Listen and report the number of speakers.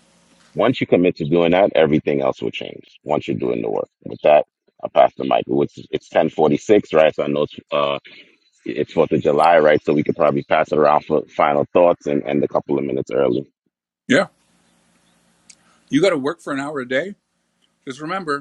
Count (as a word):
two